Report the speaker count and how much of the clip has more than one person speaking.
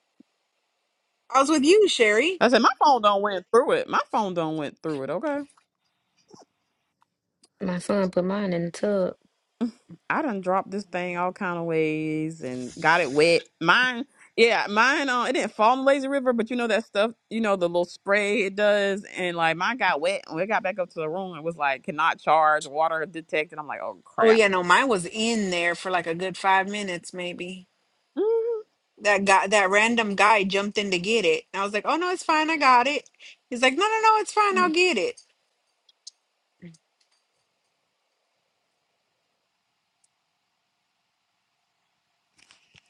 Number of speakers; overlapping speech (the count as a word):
three, under 1%